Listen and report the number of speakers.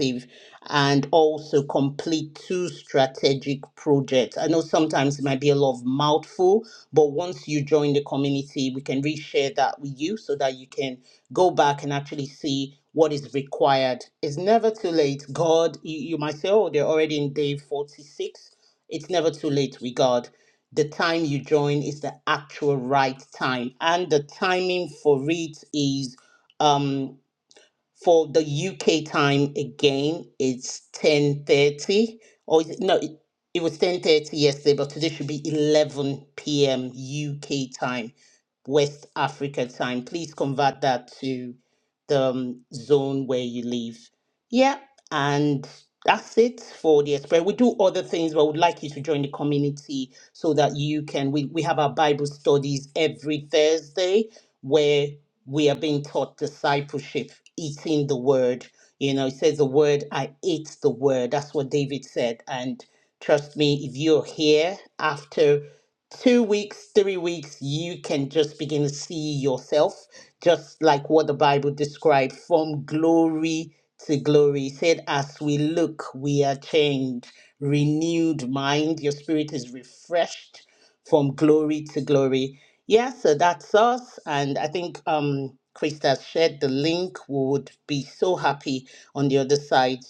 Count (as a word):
one